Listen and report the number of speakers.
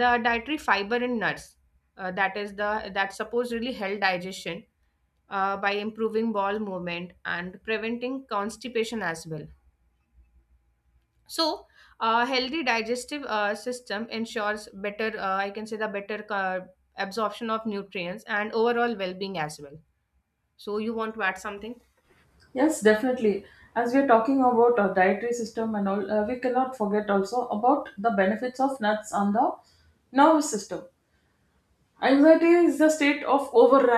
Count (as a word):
two